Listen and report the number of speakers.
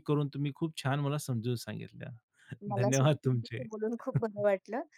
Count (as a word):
two